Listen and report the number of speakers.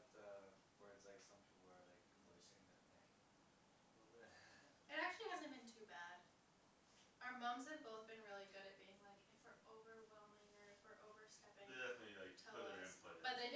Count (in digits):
3